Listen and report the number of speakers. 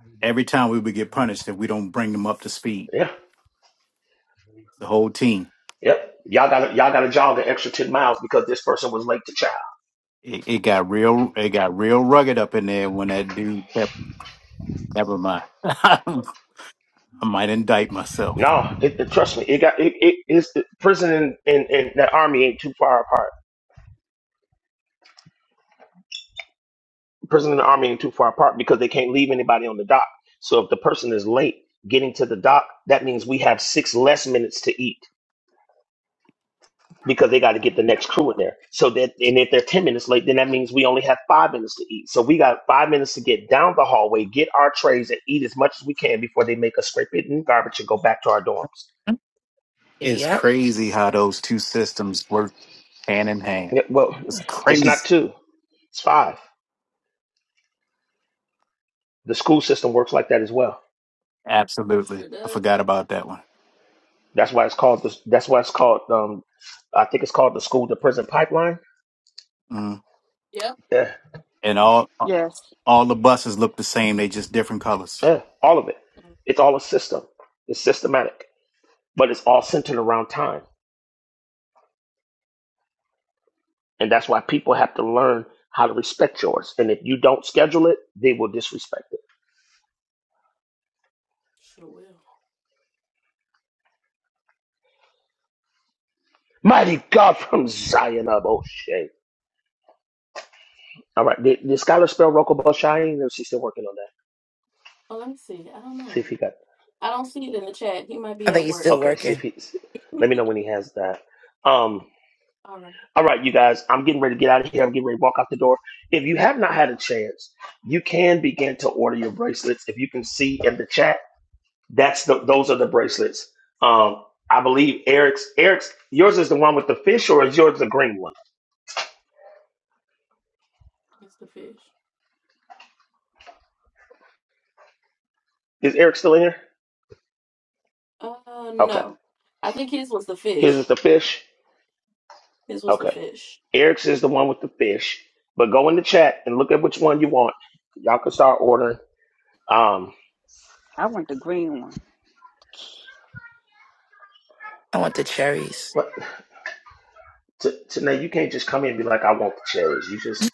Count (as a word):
five